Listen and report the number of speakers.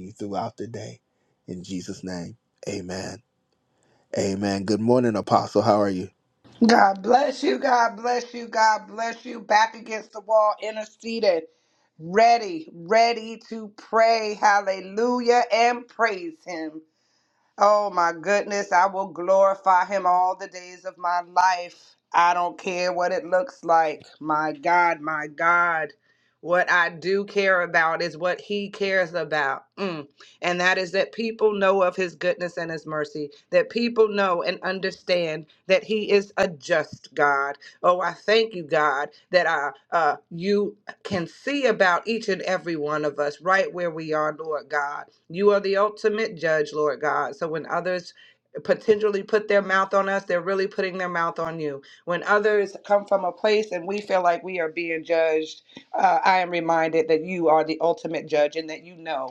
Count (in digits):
2